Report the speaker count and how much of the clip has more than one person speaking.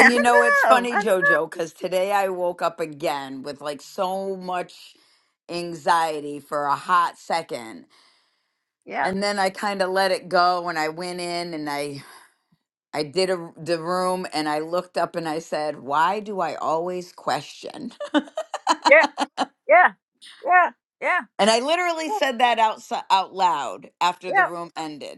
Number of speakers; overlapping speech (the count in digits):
2, about 6%